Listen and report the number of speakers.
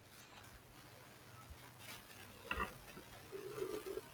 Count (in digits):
0